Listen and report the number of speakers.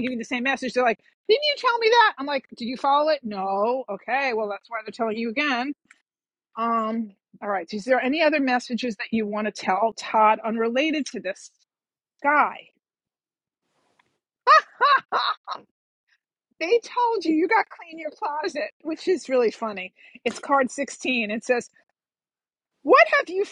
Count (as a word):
one